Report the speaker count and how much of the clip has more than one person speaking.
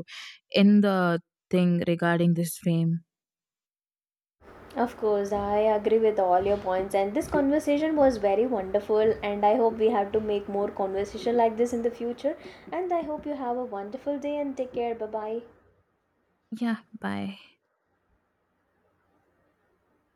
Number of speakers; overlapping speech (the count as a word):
two, no overlap